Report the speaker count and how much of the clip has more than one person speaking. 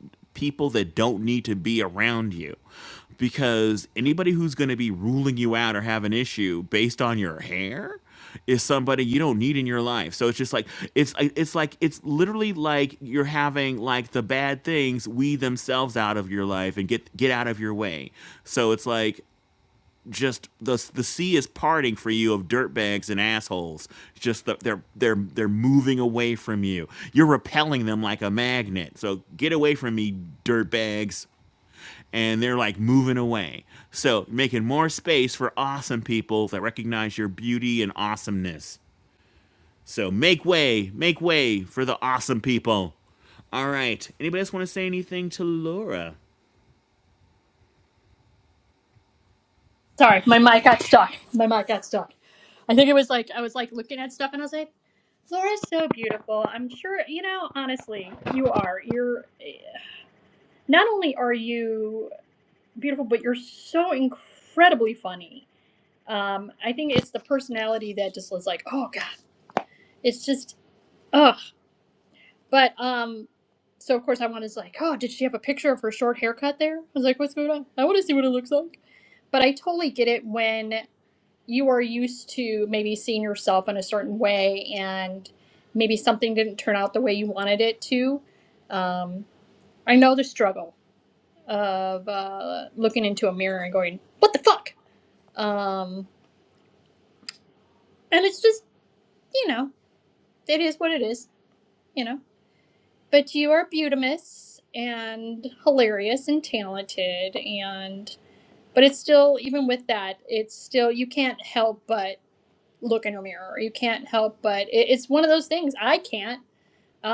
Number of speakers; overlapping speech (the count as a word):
two, no overlap